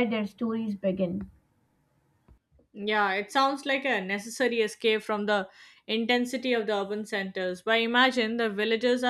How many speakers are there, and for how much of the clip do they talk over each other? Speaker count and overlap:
two, no overlap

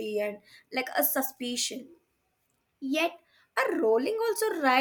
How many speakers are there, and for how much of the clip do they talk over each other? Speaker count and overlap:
one, no overlap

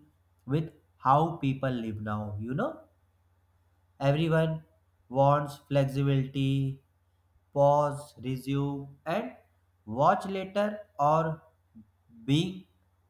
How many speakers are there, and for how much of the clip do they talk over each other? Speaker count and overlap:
one, no overlap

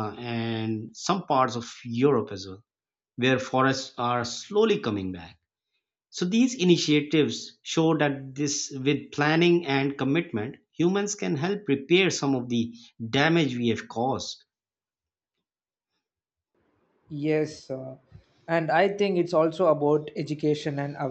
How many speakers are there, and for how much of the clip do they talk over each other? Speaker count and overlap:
two, no overlap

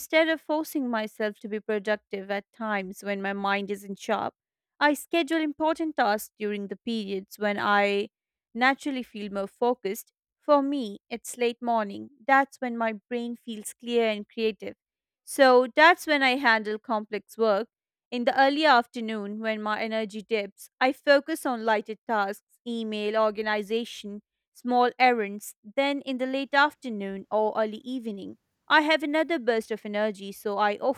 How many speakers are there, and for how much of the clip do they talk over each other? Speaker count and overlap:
one, no overlap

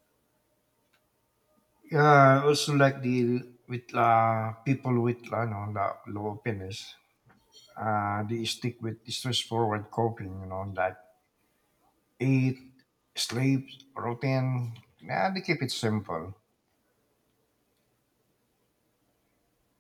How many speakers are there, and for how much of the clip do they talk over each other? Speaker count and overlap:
one, no overlap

